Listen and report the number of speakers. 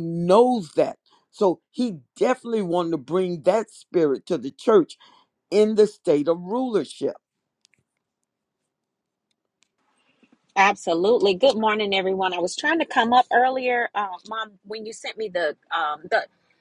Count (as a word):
two